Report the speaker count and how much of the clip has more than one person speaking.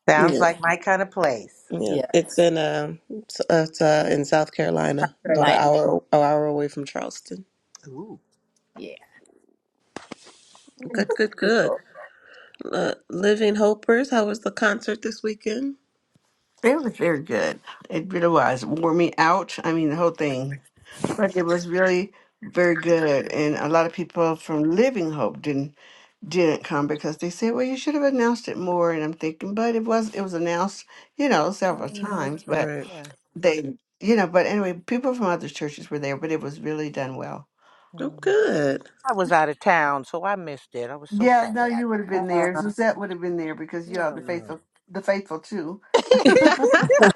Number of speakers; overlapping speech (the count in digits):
4, about 7%